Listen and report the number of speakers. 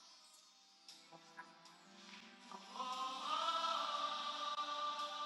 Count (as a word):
zero